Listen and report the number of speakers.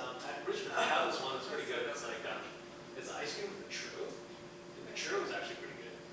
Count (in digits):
1